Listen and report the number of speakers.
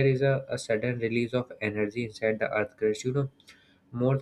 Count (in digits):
1